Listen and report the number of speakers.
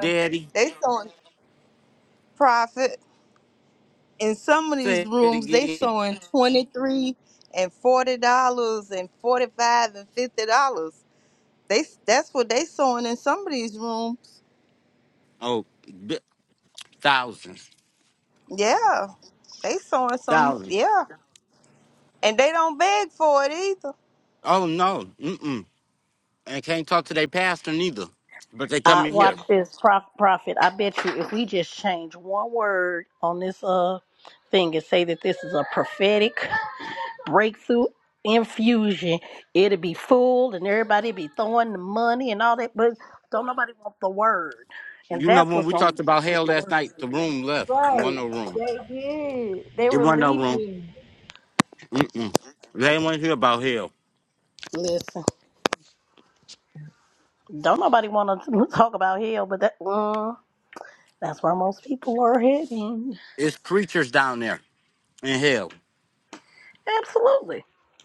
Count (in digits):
4